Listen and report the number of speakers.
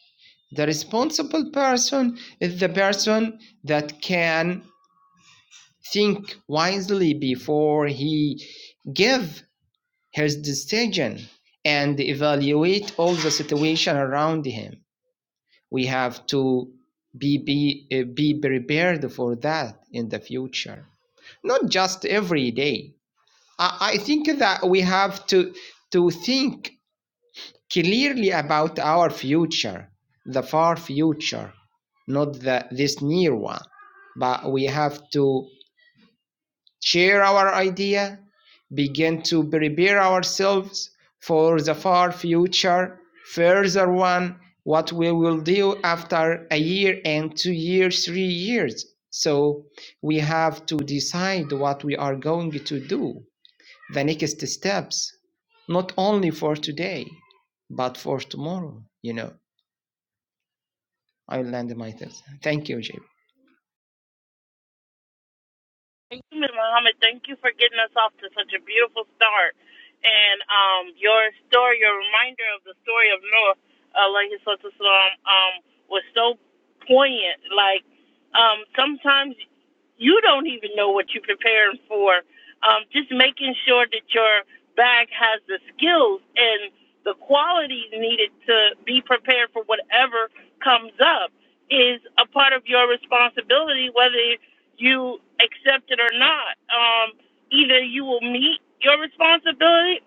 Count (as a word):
two